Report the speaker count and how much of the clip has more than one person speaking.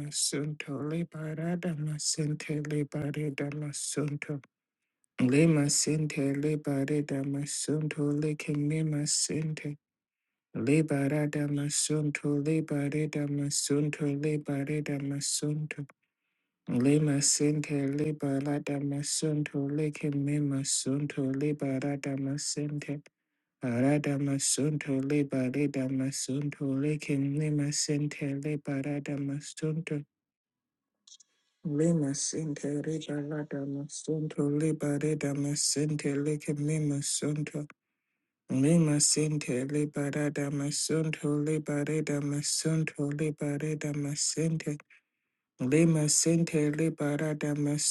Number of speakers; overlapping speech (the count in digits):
1, no overlap